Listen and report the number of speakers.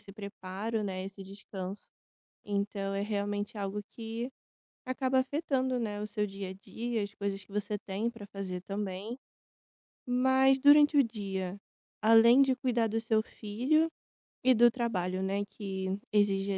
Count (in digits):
1